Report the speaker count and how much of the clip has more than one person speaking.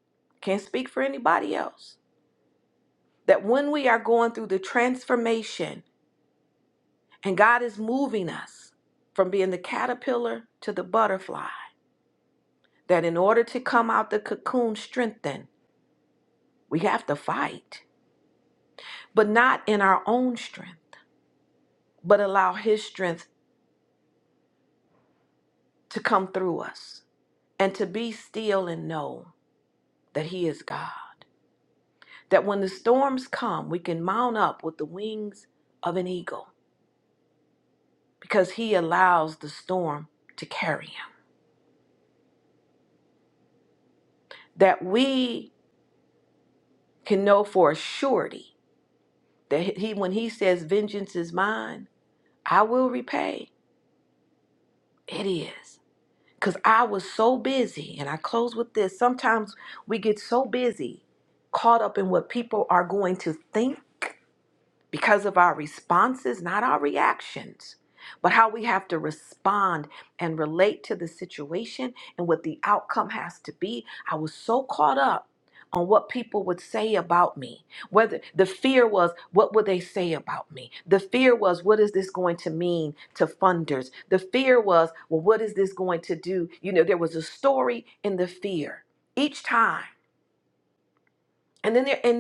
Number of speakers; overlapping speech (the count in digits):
1, no overlap